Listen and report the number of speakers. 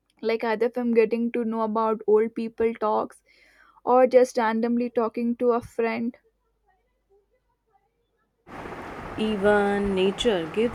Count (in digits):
2